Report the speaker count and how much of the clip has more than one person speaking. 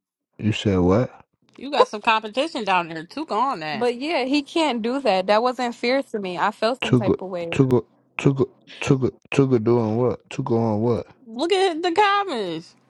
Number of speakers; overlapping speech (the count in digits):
3, about 4%